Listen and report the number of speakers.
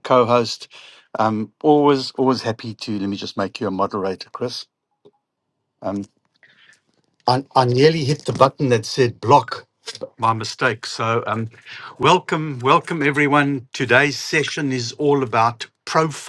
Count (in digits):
1